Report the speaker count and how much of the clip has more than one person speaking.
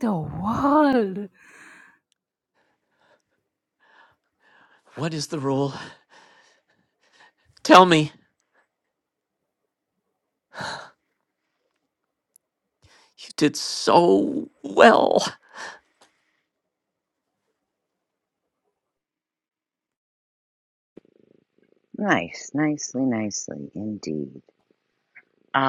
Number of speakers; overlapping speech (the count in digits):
3, no overlap